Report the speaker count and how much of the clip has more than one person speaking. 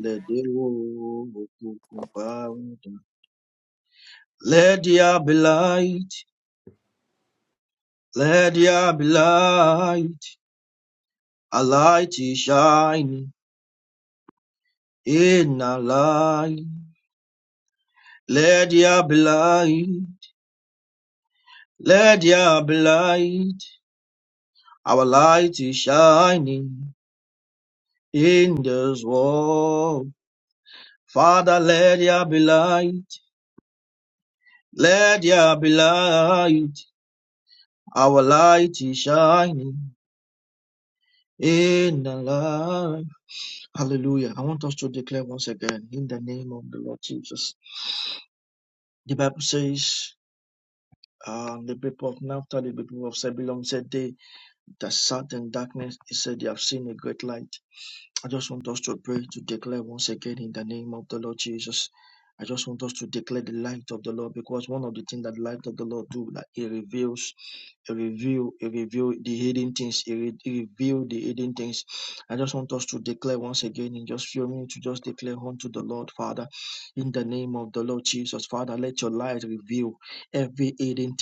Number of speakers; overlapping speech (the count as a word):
one, no overlap